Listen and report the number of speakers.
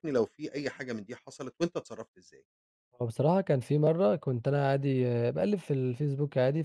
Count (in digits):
2